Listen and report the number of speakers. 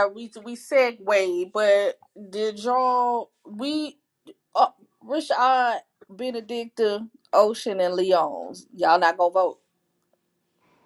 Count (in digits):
1